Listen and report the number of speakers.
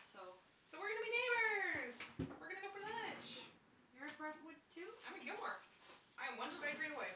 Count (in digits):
2